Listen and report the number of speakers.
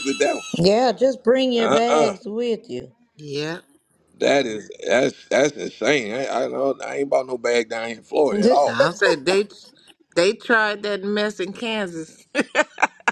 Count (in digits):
3